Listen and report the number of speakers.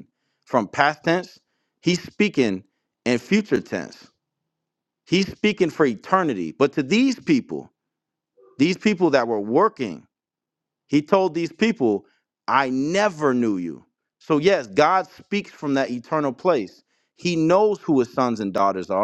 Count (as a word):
one